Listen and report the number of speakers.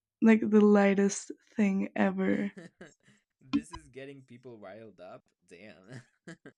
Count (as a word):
two